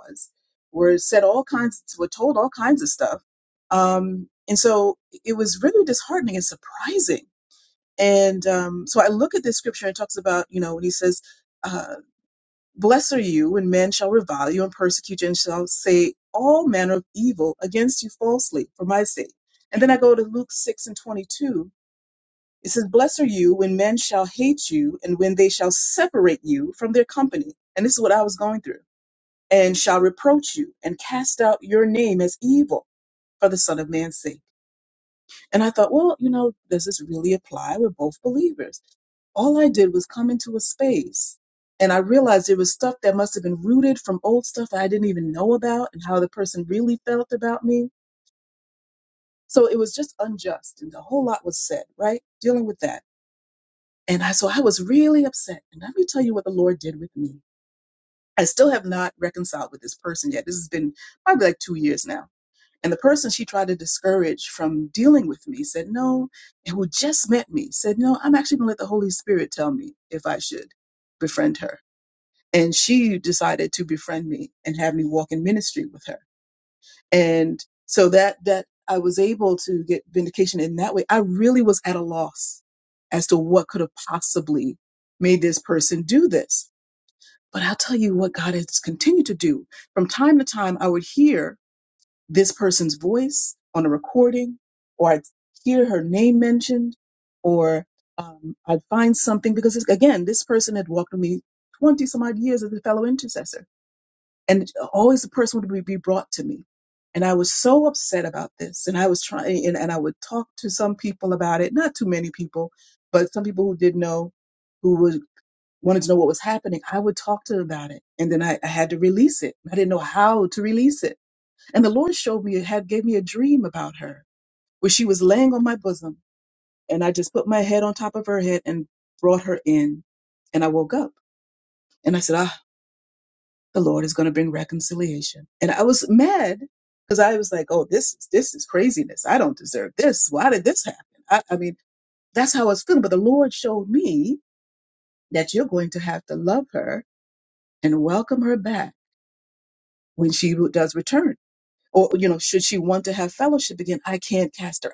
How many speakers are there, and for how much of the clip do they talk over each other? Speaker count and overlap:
one, no overlap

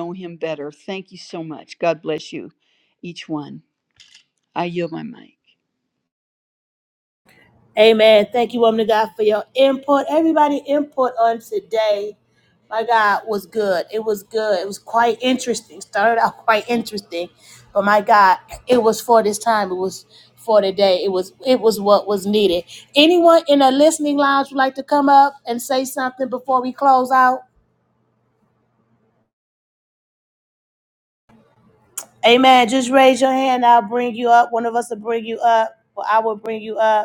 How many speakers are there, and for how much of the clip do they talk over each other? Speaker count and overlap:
two, no overlap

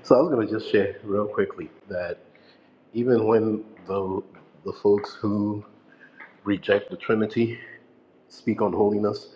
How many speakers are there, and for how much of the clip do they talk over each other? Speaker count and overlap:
one, no overlap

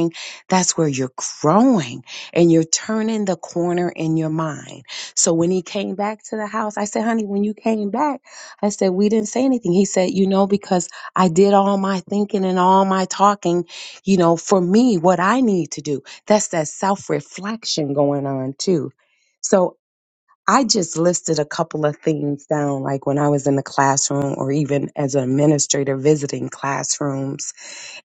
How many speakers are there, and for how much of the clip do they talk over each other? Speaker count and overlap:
one, no overlap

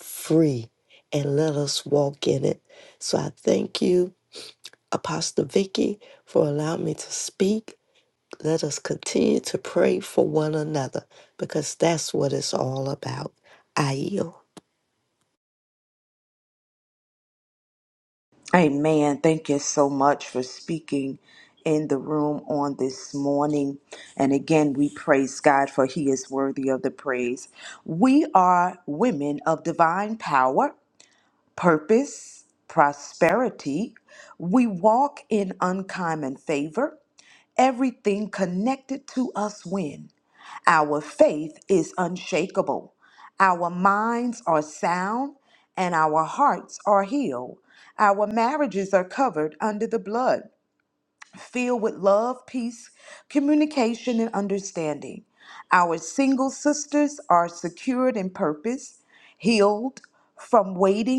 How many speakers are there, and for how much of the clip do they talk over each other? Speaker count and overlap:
two, no overlap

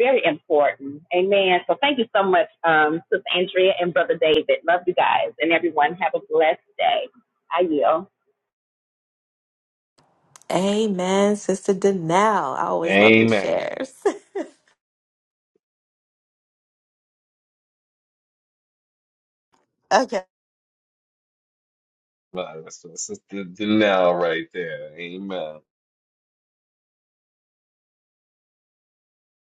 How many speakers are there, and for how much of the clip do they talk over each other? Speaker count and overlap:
three, about 3%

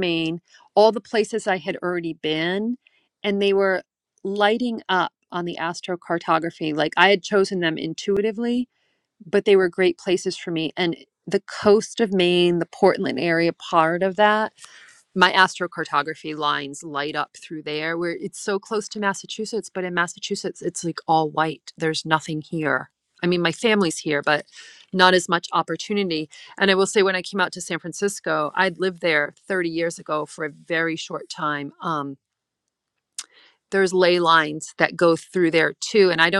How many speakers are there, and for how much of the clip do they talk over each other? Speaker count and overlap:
one, no overlap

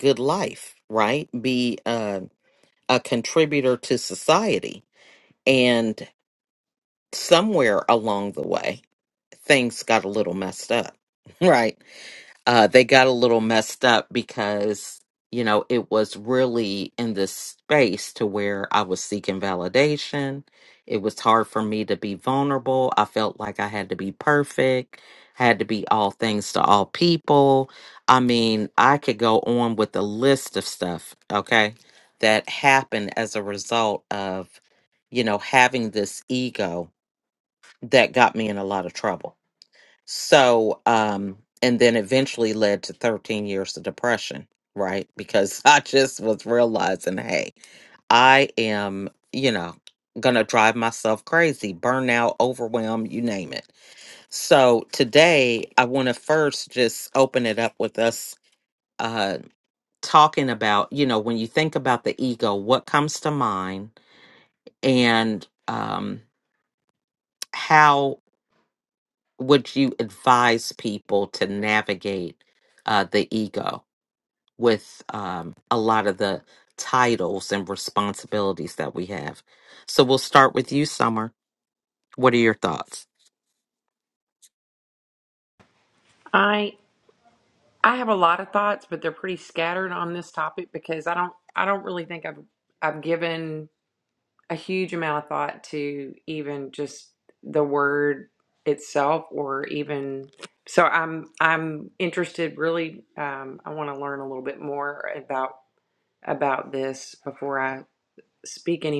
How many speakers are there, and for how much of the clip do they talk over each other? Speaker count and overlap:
two, no overlap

